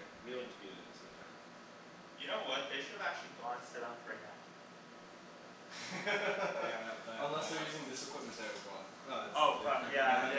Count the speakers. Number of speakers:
3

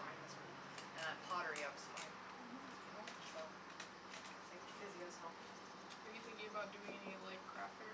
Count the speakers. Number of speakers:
2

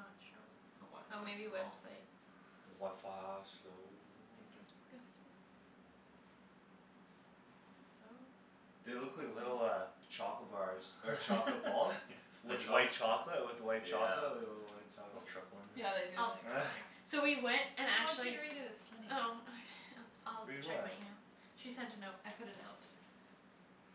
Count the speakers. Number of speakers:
4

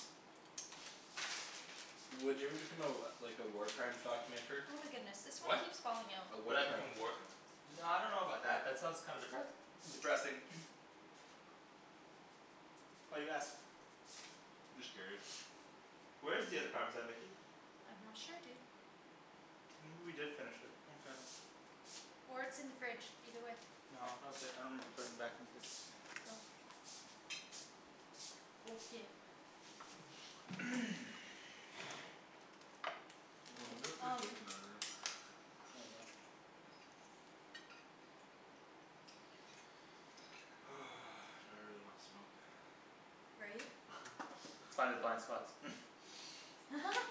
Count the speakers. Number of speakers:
3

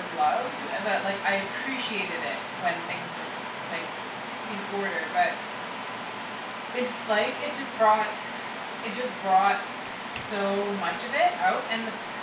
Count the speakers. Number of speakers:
1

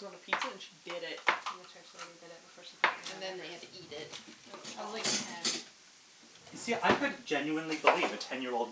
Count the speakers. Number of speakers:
3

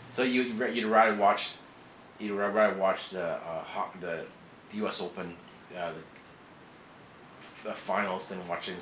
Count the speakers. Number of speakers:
1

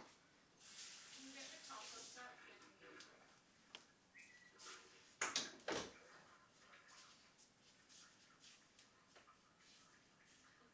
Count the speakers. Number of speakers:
1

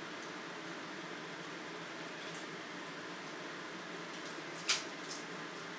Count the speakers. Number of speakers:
0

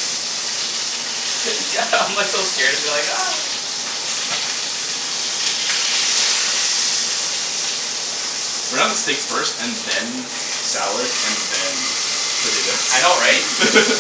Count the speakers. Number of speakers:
2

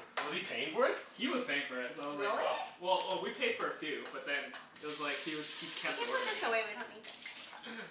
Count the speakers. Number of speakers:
3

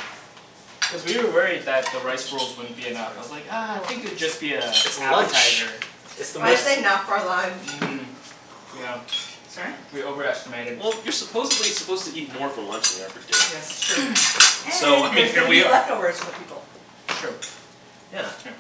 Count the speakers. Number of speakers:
4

